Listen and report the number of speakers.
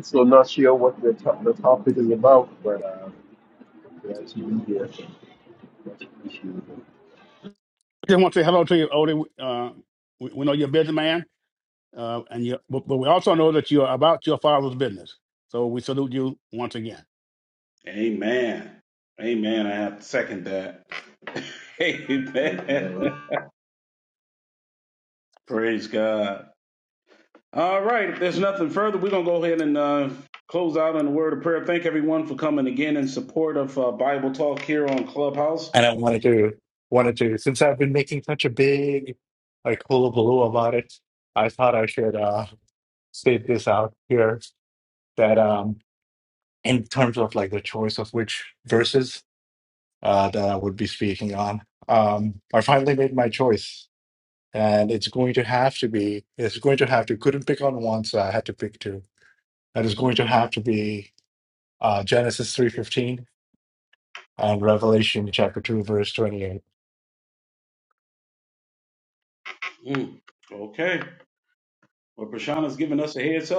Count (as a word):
four